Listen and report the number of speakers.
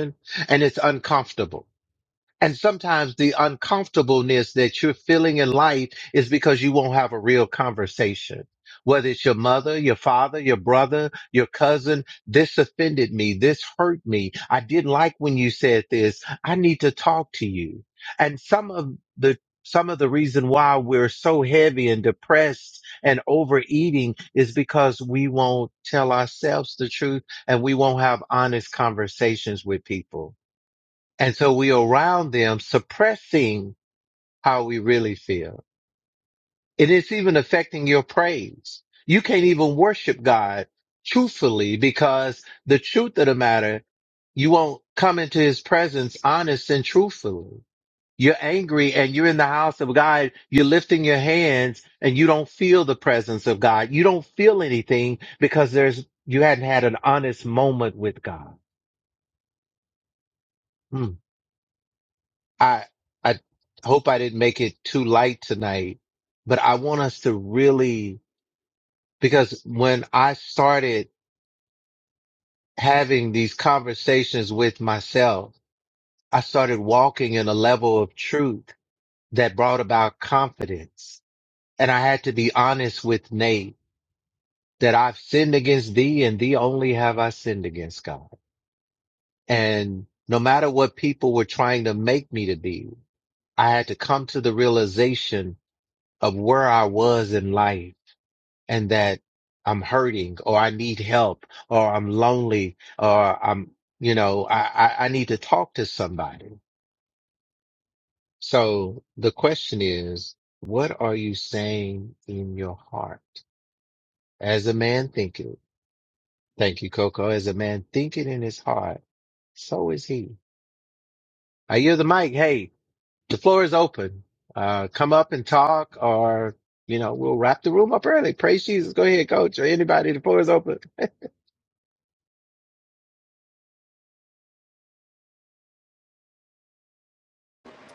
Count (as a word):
one